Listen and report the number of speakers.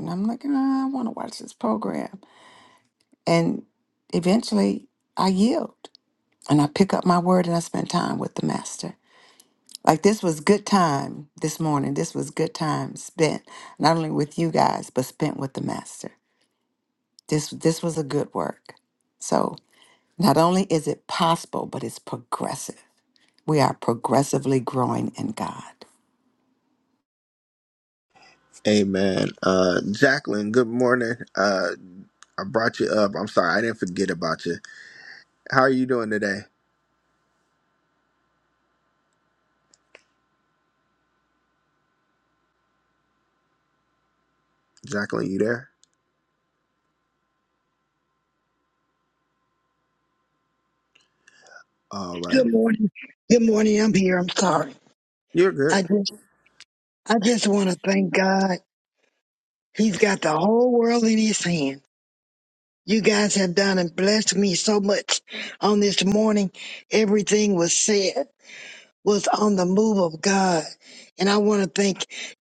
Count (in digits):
3